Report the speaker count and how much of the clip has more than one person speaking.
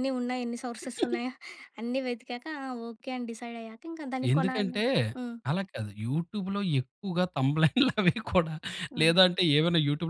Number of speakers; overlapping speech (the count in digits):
2, about 8%